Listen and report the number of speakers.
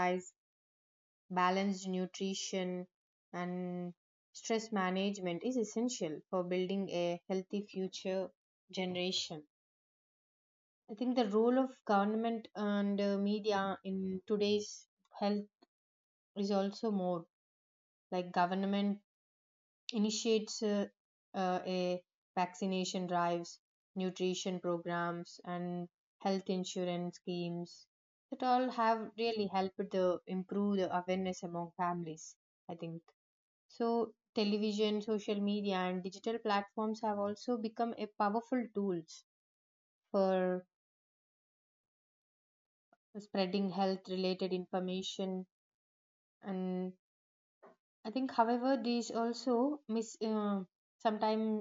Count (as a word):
one